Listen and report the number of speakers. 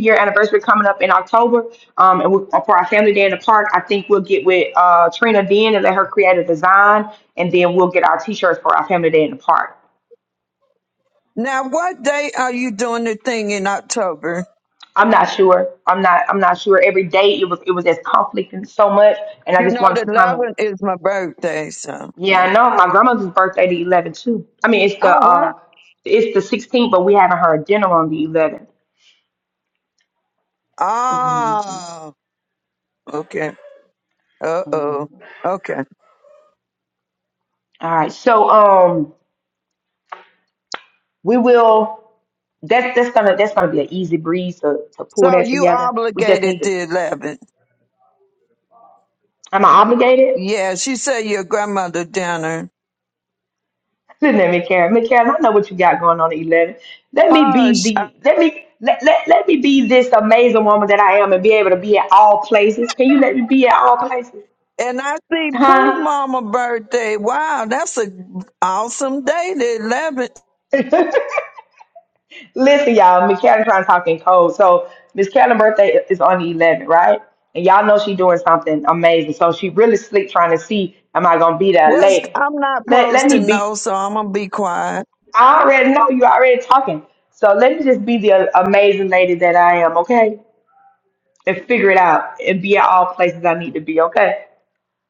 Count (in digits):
2